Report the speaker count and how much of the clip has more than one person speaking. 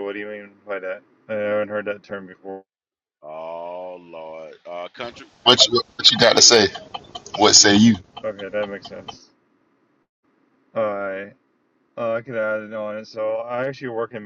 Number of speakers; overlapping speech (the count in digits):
3, no overlap